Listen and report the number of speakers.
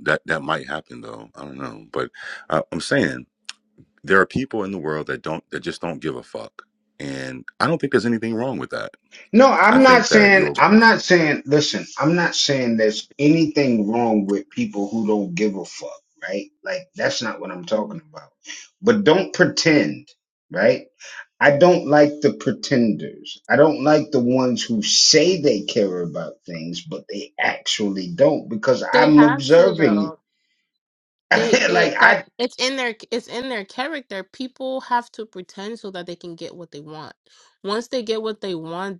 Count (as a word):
three